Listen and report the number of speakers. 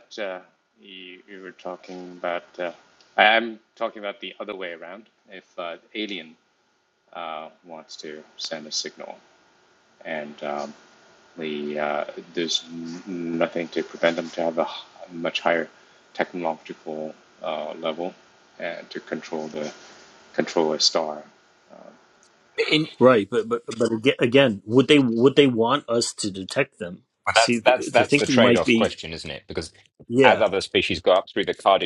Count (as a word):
three